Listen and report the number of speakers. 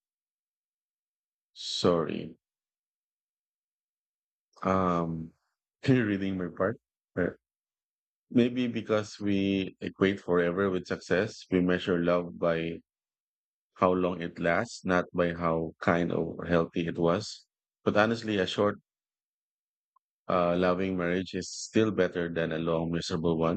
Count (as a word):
one